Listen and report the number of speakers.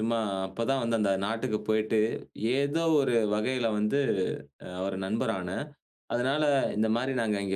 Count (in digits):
1